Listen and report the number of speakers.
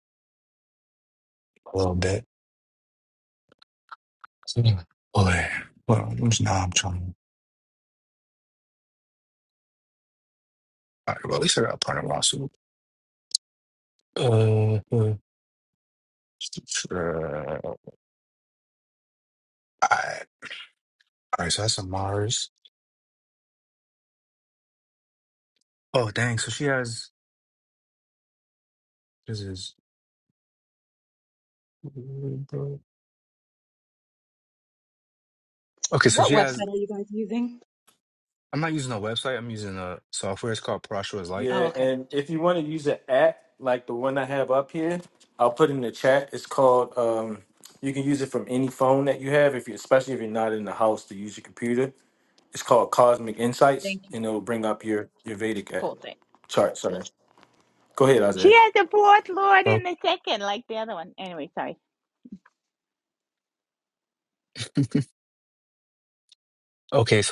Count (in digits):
4